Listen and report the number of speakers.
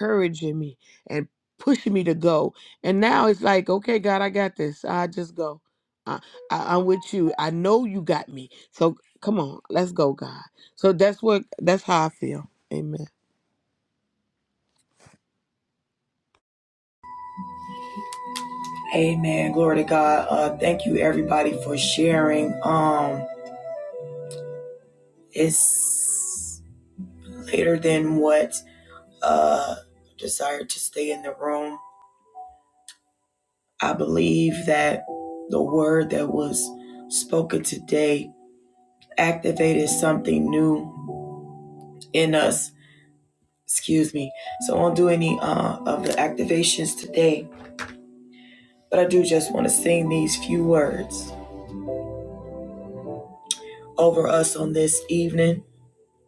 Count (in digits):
2